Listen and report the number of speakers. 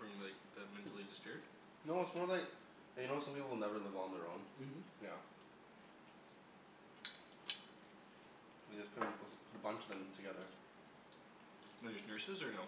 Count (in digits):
2